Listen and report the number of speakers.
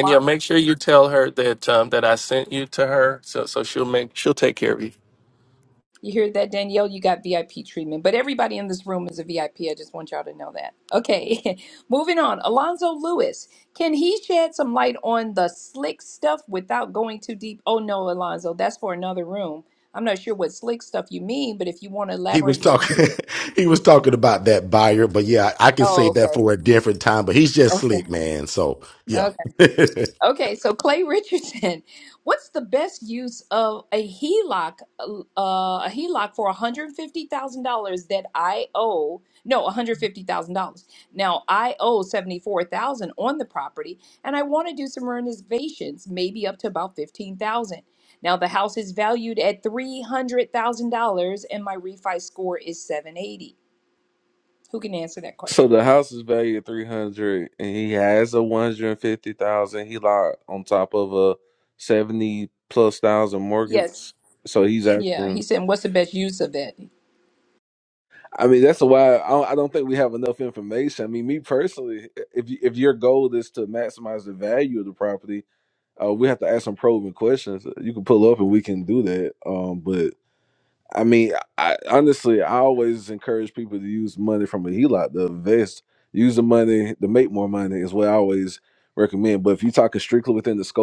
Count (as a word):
four